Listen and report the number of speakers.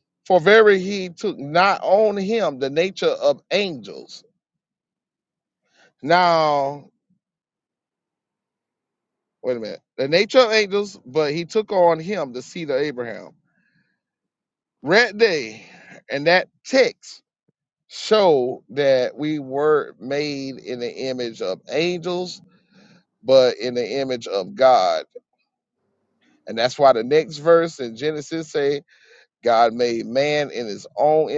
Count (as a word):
one